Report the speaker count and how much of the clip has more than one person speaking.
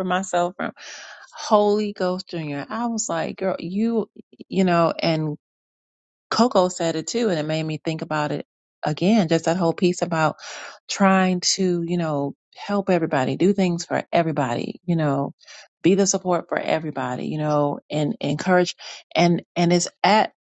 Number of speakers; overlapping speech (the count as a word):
one, no overlap